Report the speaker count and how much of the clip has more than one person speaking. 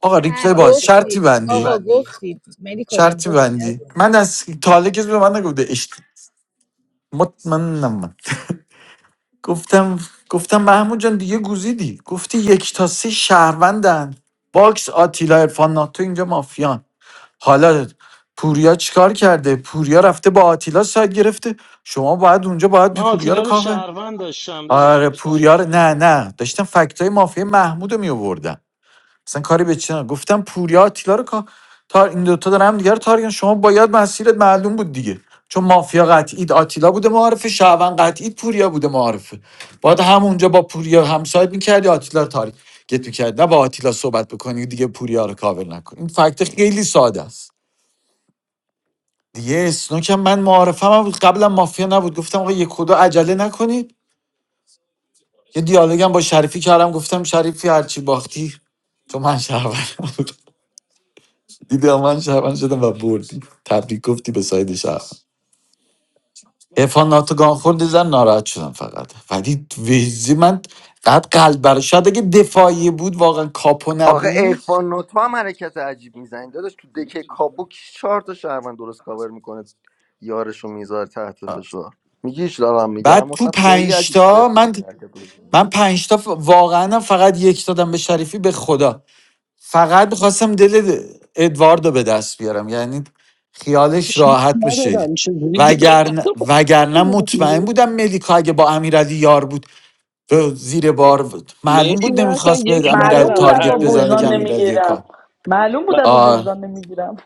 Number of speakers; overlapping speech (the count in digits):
6, about 11%